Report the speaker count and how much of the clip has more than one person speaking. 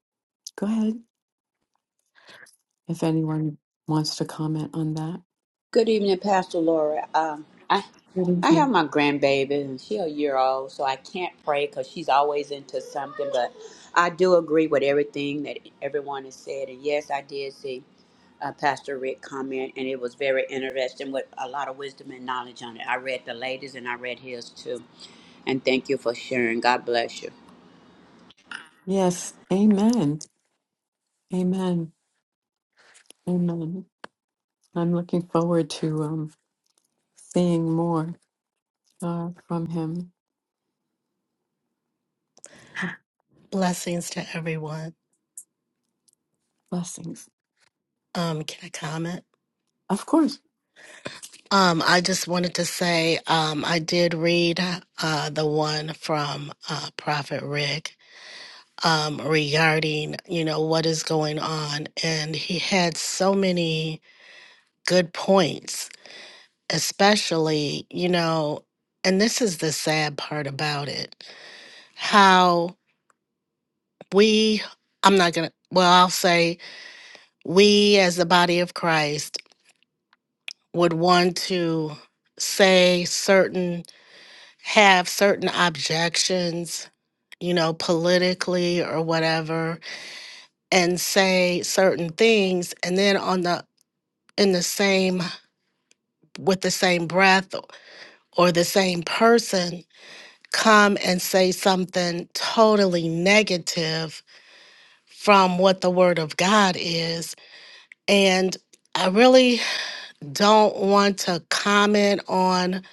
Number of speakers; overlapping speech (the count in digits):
3, under 1%